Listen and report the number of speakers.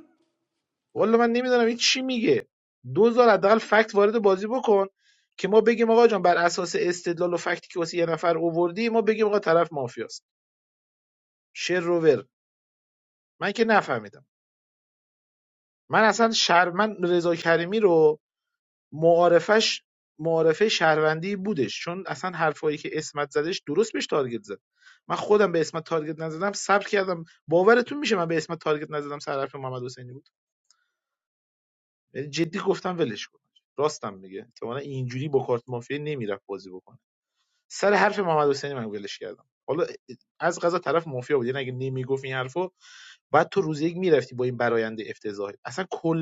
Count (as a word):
one